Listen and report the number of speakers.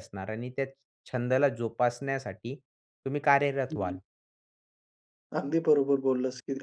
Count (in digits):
2